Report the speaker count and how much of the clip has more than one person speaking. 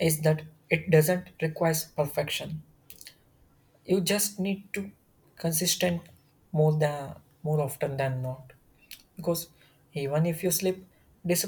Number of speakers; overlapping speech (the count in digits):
1, no overlap